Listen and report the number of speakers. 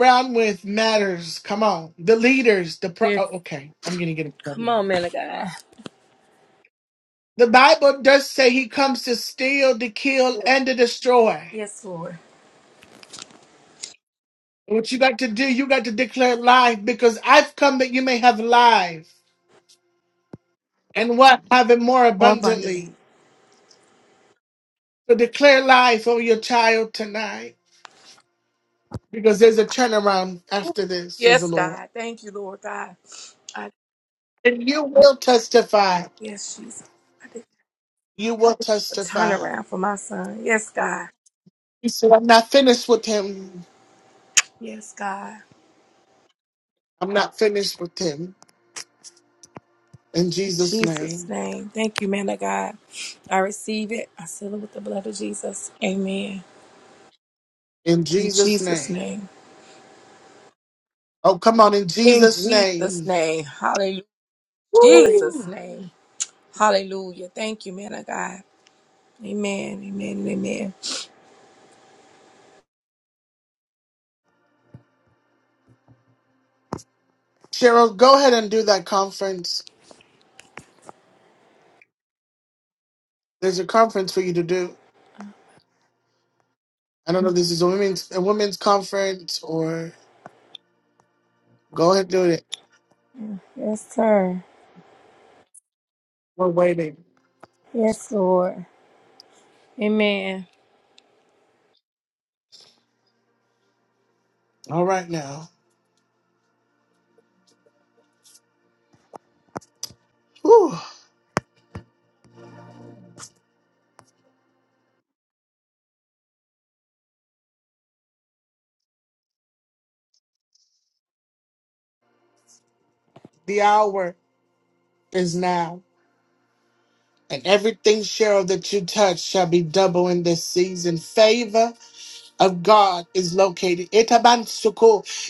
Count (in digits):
2